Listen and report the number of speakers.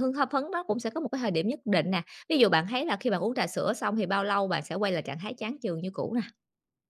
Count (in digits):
1